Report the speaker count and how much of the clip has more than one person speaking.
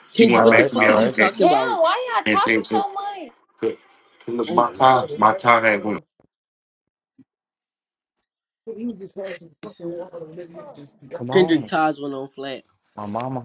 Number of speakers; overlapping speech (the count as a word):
four, about 20%